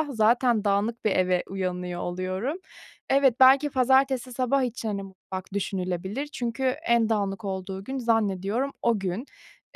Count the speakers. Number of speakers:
1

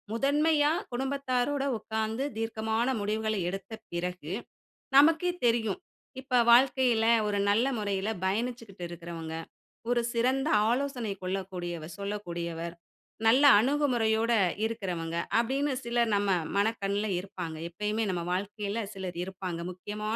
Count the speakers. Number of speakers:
1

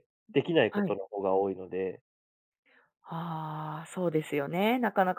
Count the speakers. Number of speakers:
2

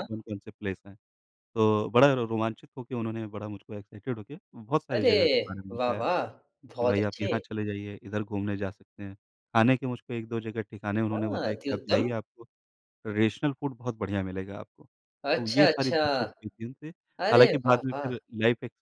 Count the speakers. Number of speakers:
2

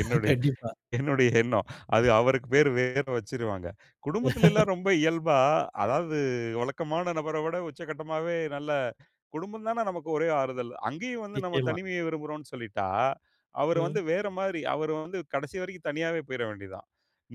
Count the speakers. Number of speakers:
2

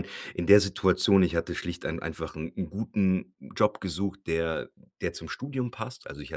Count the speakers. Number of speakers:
1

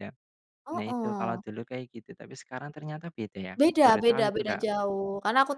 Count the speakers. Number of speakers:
2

